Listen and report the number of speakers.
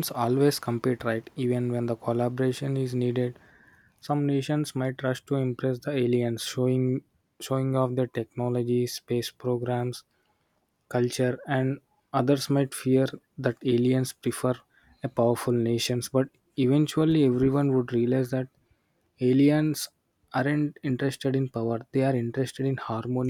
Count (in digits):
1